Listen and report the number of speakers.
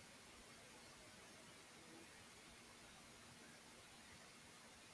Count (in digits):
0